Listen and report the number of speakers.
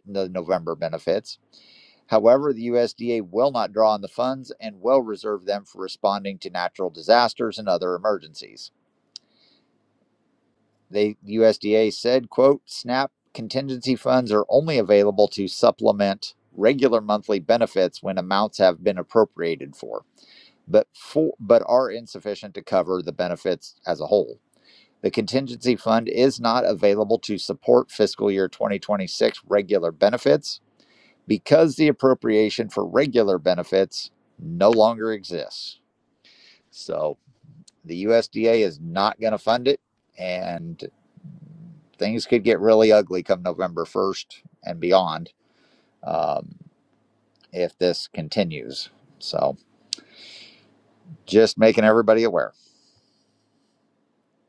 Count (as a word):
one